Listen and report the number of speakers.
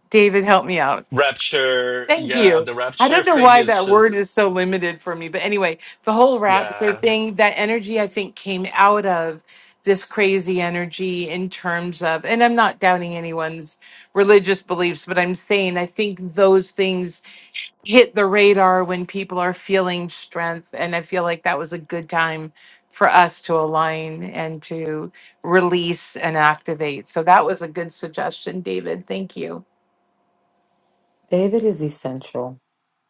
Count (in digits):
3